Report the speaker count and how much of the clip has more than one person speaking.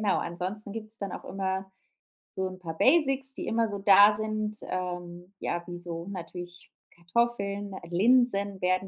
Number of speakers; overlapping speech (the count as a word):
one, no overlap